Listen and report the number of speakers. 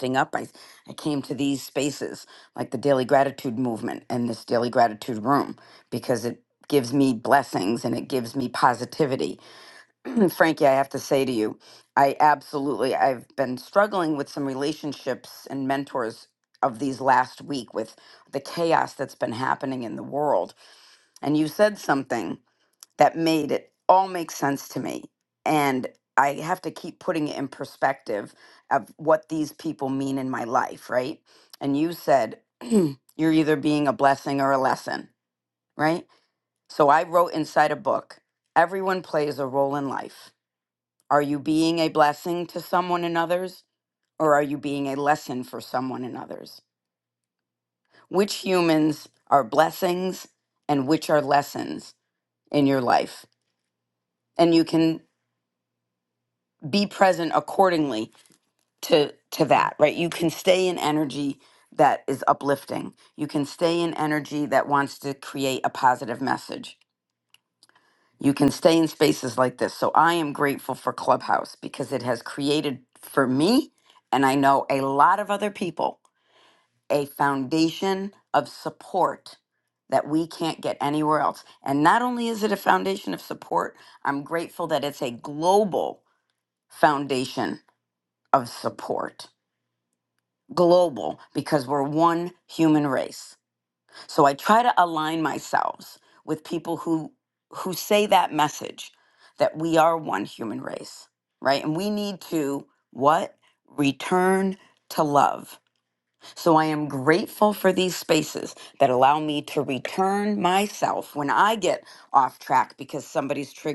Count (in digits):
1